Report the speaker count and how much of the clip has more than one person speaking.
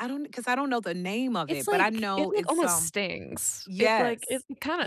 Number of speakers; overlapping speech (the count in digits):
2, about 37%